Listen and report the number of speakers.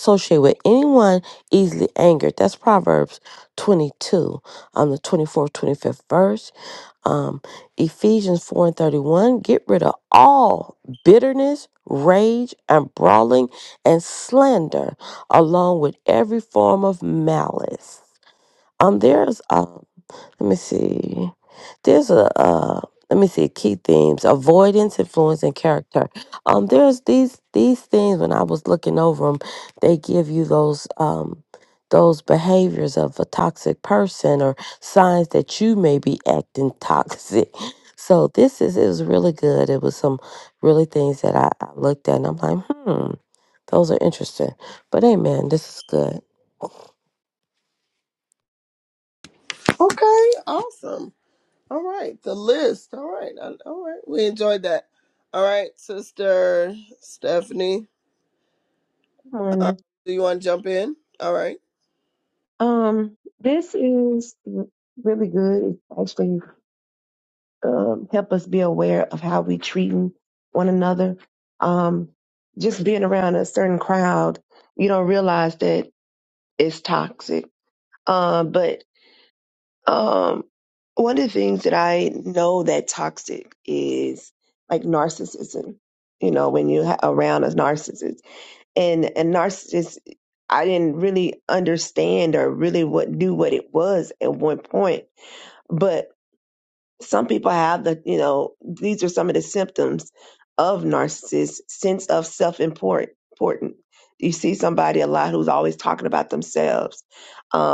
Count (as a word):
three